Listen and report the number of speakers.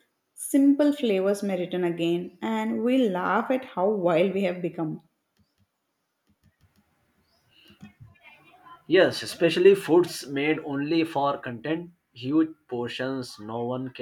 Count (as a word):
two